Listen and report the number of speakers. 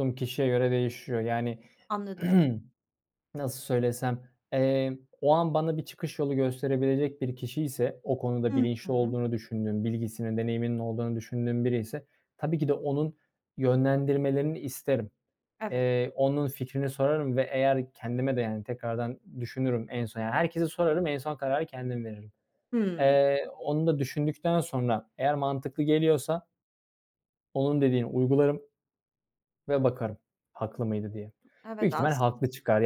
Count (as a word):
two